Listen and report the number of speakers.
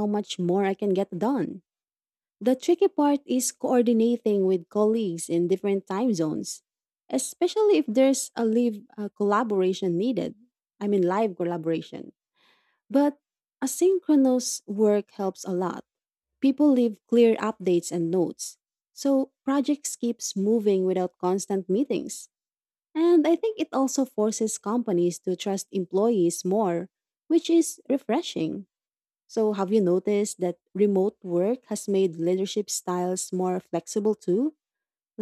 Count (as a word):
one